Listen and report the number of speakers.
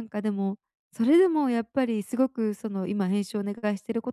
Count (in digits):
1